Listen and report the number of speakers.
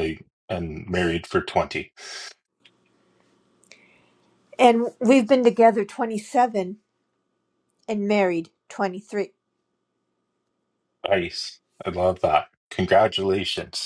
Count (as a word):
two